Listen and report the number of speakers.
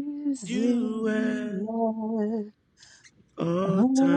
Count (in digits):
2